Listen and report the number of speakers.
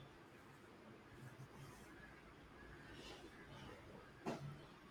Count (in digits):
0